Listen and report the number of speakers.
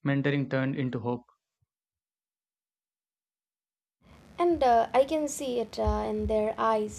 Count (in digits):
2